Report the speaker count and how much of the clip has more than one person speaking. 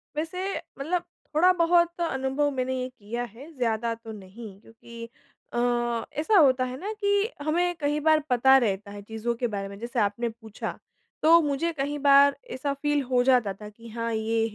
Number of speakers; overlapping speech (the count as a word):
one, no overlap